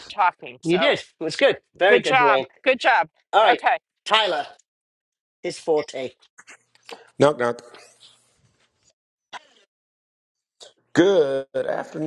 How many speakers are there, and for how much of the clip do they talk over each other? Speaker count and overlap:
3, about 8%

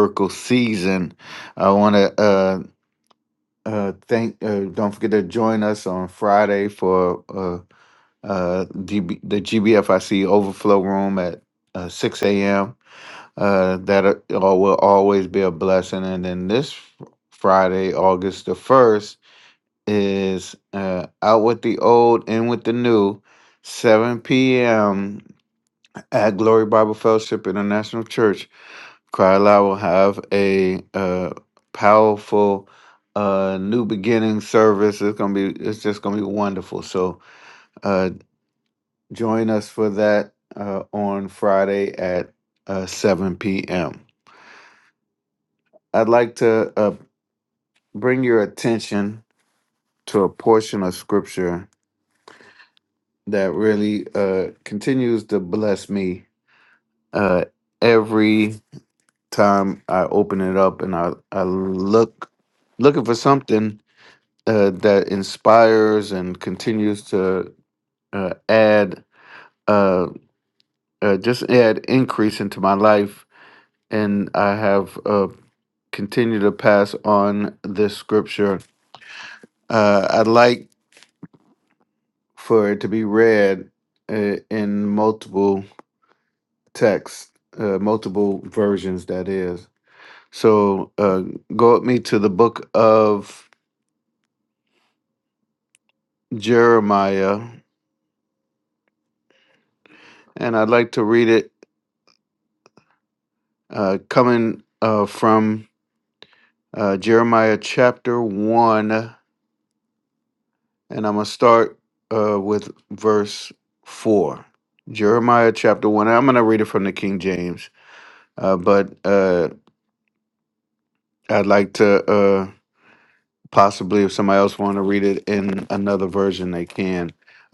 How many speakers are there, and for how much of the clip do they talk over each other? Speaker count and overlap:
1, no overlap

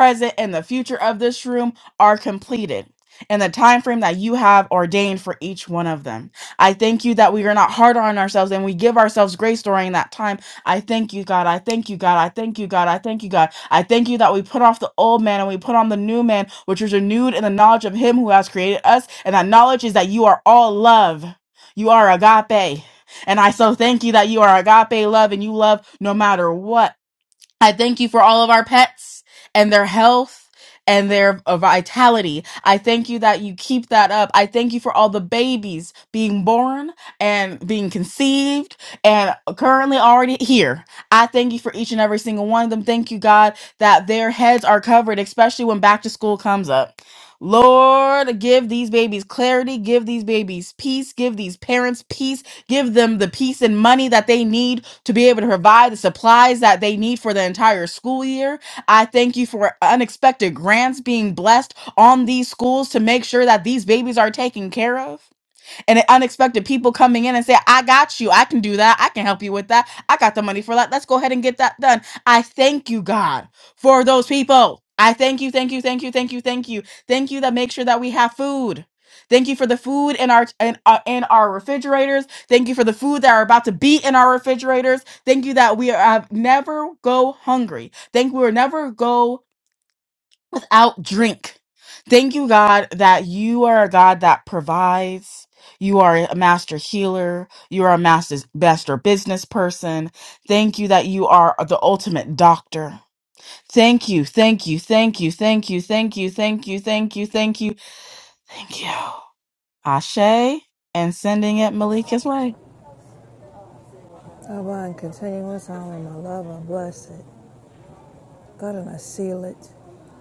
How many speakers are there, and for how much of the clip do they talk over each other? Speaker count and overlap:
2, no overlap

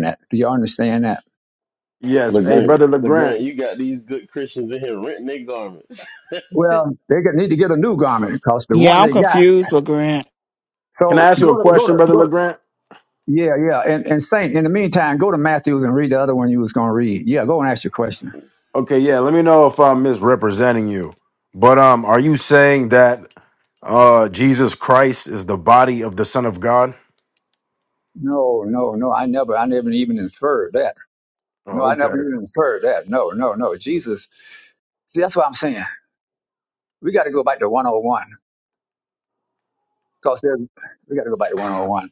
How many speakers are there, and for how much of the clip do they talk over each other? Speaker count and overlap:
4, about 8%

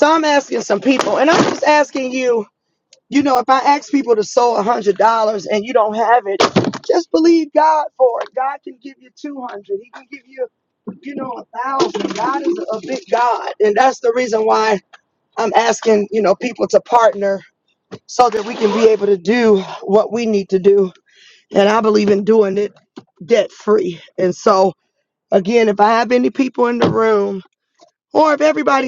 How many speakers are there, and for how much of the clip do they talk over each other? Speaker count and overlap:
1, no overlap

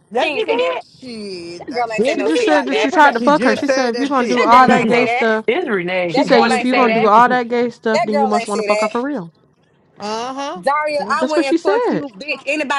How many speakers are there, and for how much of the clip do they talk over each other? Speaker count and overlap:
5, about 54%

